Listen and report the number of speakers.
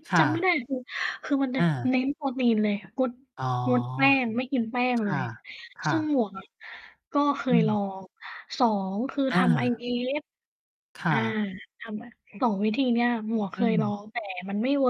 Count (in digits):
2